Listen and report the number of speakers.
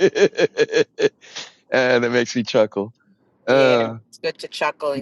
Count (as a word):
two